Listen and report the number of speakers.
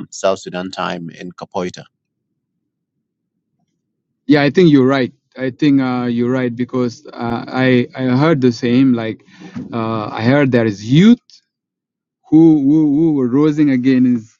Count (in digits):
2